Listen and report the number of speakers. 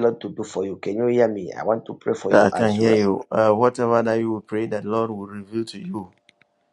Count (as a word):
two